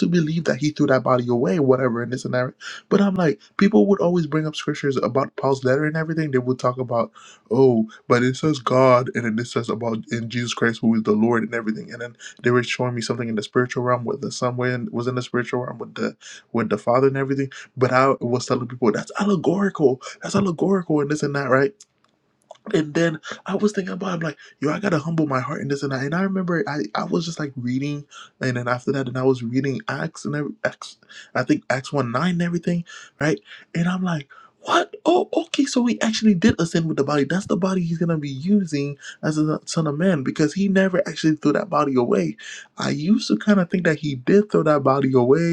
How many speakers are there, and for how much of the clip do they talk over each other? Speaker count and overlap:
one, no overlap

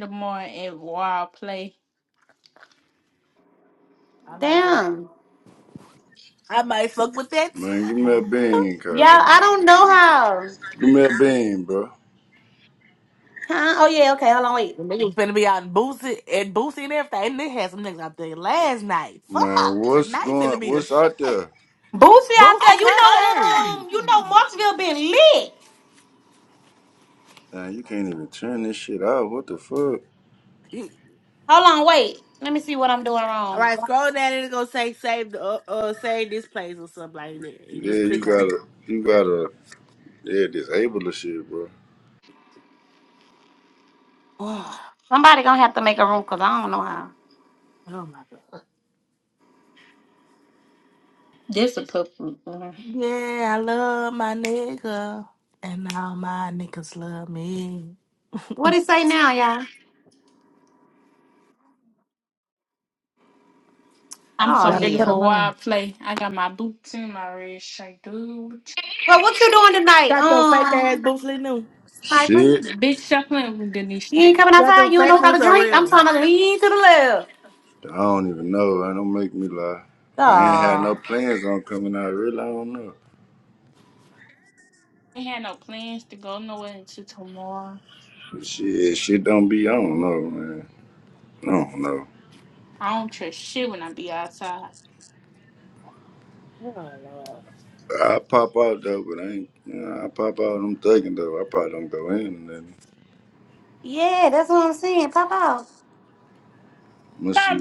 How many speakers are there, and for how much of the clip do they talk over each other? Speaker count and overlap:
four, about 9%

